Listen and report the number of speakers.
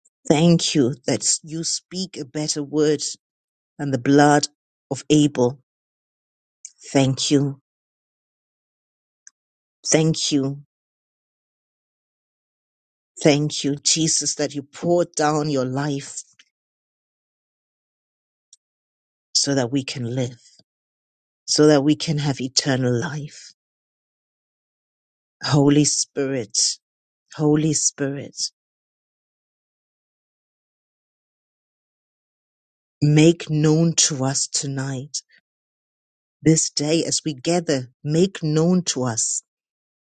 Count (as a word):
one